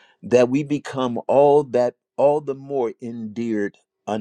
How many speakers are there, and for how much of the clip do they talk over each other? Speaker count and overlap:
one, no overlap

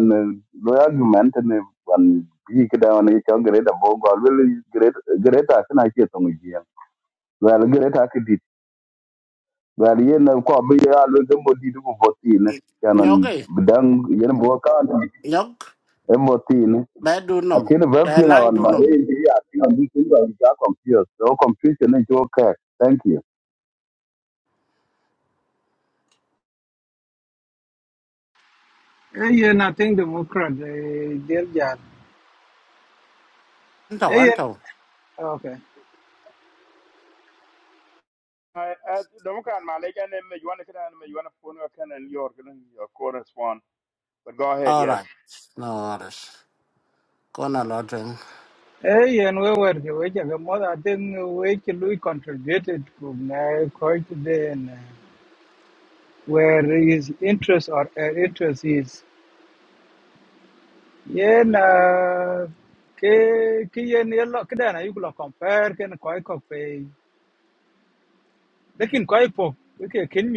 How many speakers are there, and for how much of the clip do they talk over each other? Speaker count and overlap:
four, about 3%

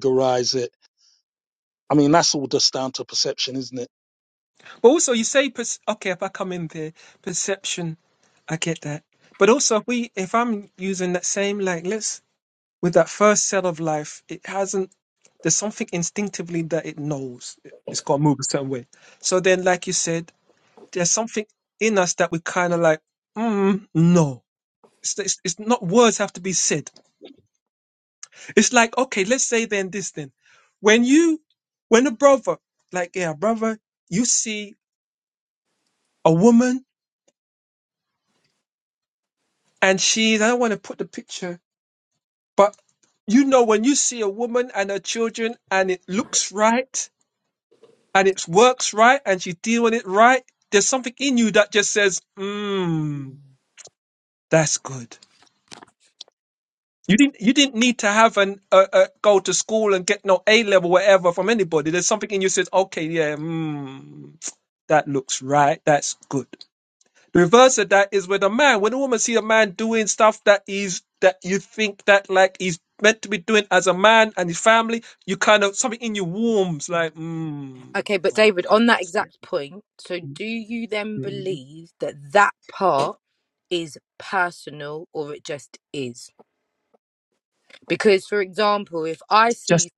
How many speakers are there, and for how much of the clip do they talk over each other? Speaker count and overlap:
three, about 1%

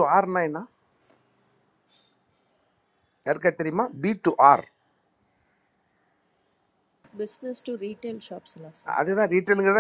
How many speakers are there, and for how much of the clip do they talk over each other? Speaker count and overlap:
two, about 1%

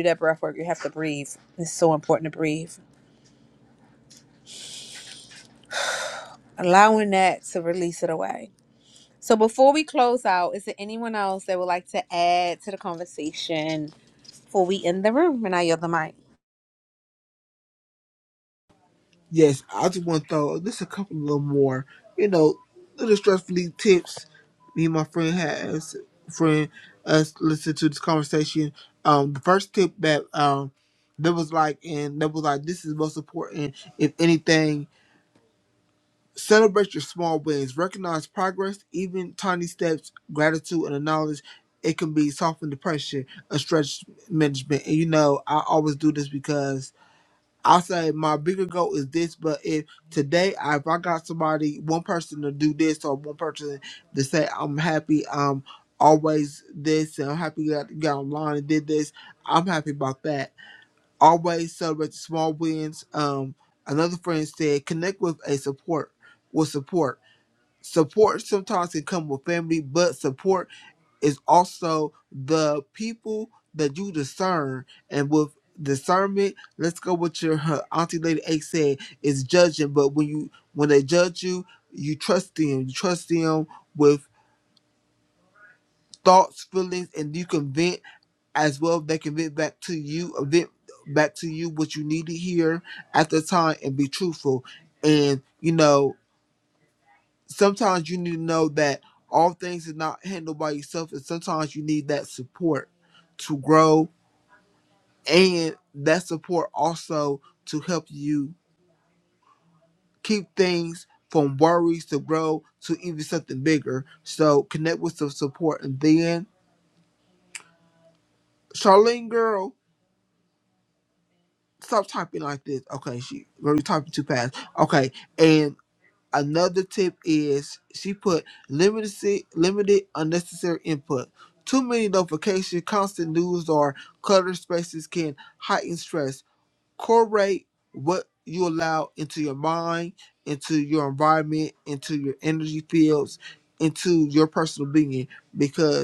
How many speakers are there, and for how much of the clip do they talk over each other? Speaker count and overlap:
two, no overlap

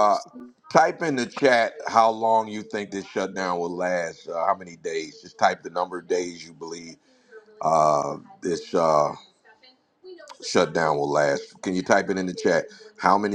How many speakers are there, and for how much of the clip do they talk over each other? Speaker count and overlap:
one, no overlap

